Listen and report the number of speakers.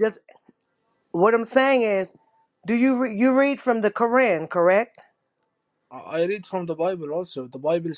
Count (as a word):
two